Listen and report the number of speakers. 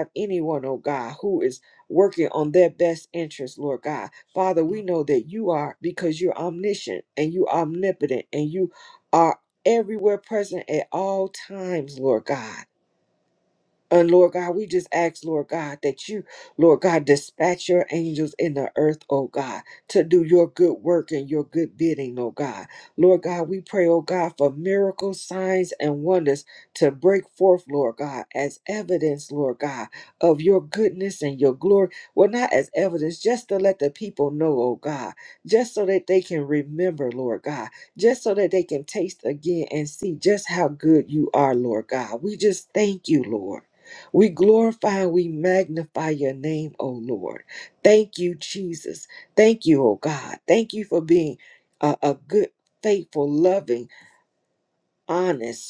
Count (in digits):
1